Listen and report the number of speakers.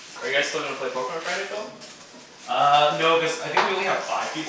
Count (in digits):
2